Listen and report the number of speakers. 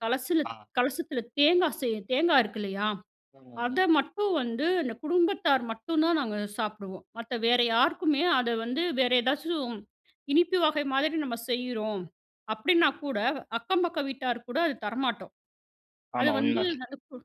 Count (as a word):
two